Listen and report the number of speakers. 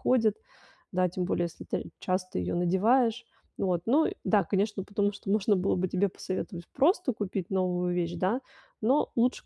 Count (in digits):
1